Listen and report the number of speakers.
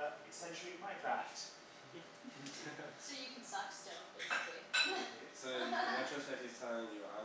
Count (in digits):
3